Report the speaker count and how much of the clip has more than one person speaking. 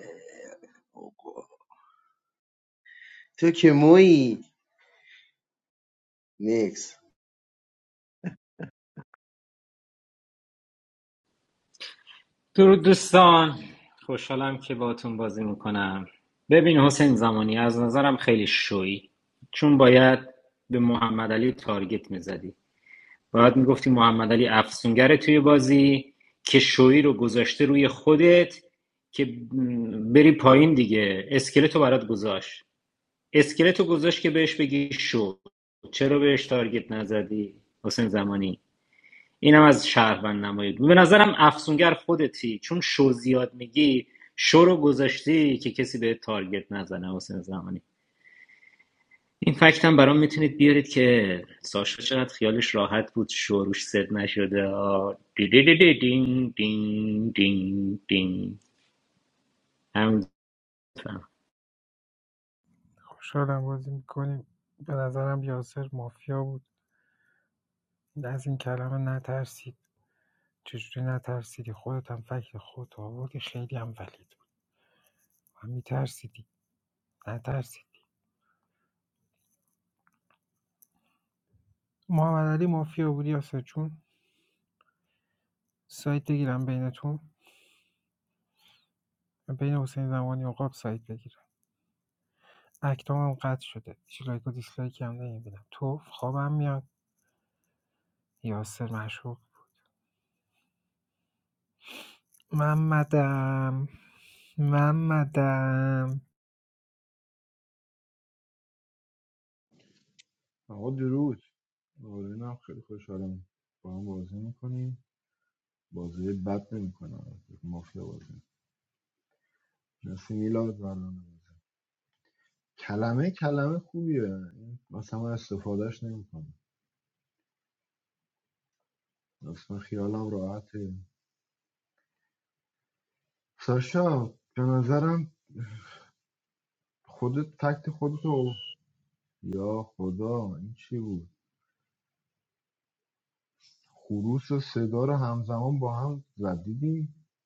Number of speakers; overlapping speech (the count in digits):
4, no overlap